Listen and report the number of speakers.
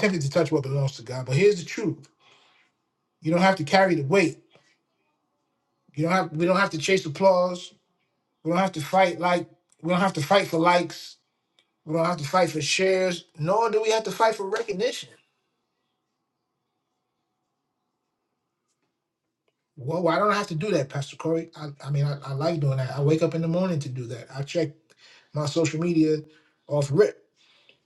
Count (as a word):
one